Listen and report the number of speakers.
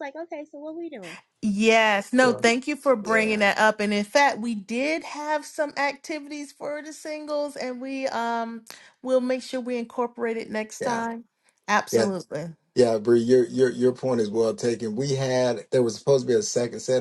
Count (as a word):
three